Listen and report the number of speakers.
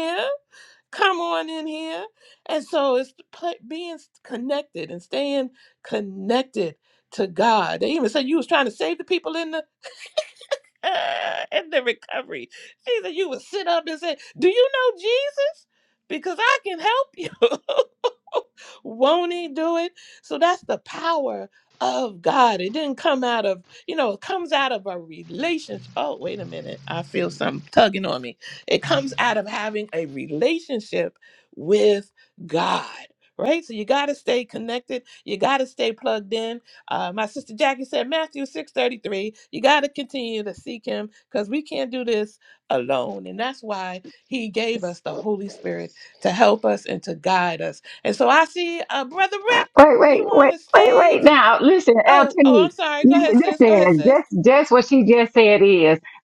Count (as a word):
two